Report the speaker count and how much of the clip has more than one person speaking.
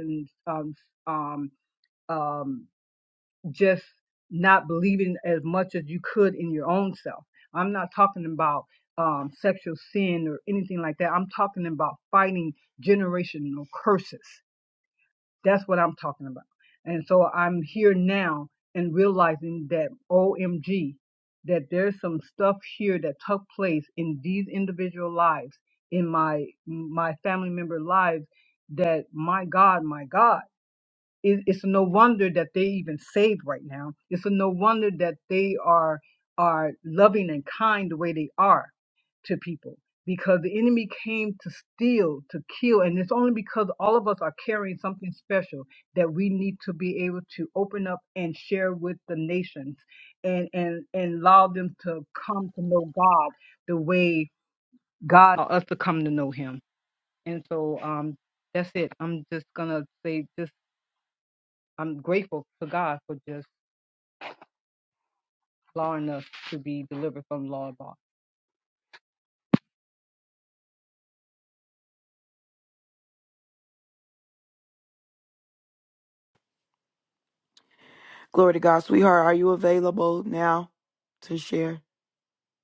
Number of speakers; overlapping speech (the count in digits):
2, no overlap